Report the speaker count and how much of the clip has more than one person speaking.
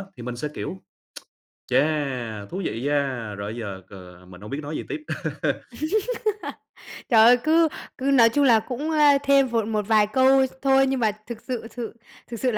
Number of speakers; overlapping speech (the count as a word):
two, no overlap